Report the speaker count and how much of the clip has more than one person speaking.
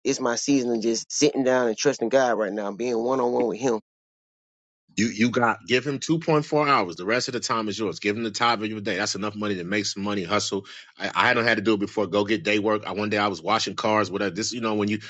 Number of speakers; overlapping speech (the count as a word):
two, no overlap